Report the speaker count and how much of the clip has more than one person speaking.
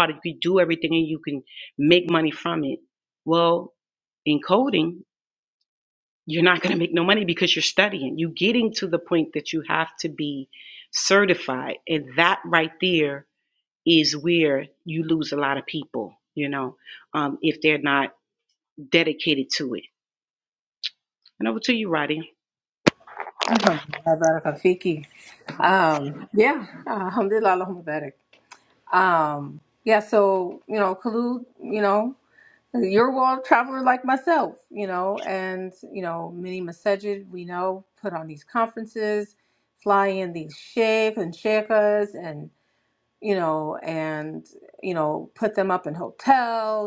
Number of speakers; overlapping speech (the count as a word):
two, no overlap